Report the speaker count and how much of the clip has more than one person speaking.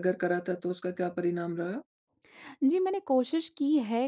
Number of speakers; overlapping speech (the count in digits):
2, no overlap